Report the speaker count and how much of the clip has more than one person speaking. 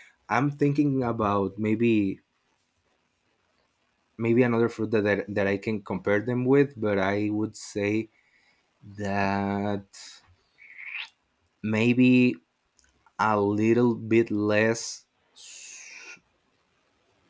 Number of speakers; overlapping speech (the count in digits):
1, no overlap